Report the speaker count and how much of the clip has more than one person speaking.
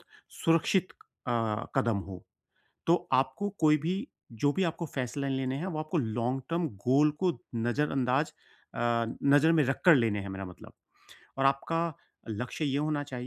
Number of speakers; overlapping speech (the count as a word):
one, no overlap